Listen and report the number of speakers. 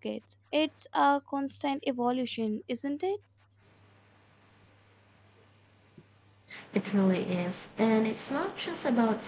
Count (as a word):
two